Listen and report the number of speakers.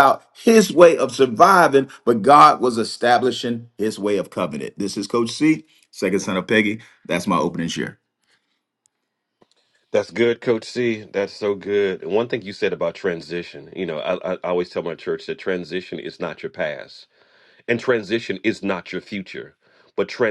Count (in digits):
2